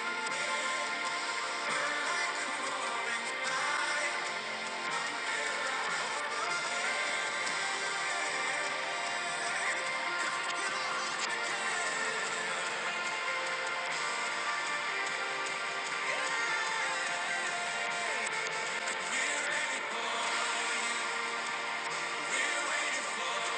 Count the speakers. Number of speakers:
zero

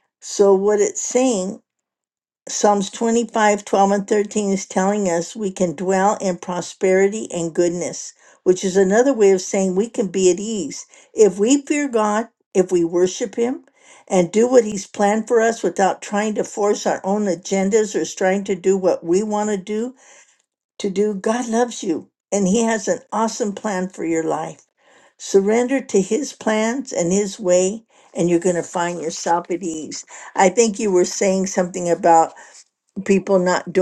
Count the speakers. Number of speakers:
one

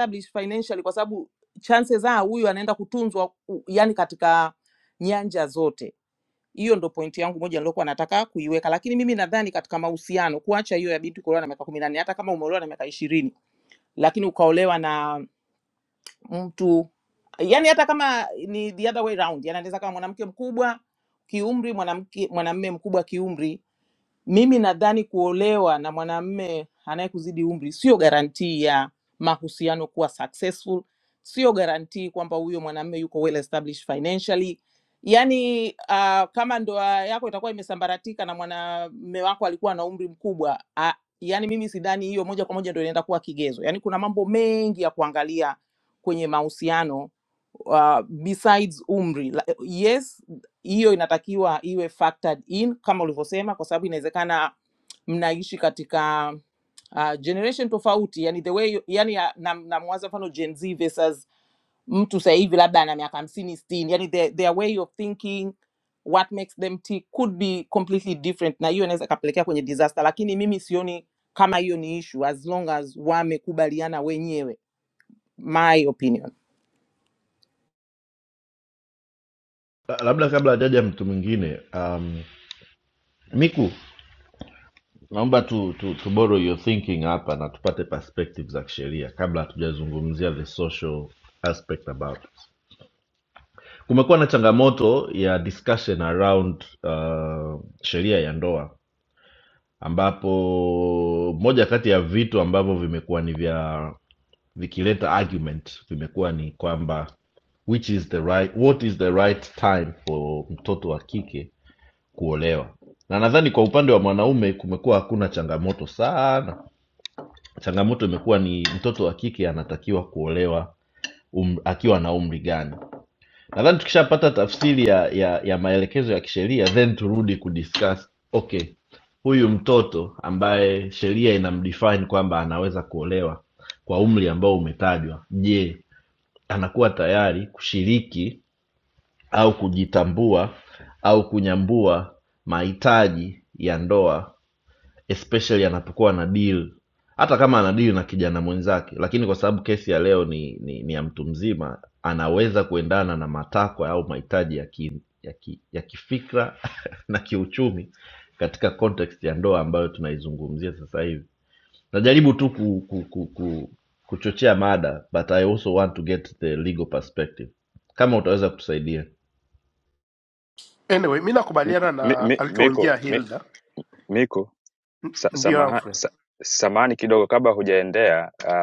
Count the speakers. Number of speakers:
four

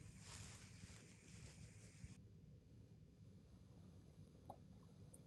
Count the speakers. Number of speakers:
zero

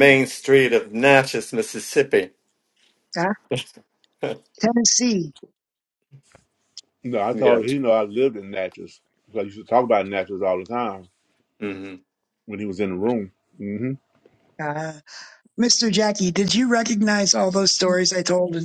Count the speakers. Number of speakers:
three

